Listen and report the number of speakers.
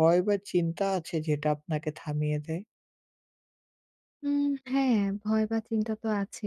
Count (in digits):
2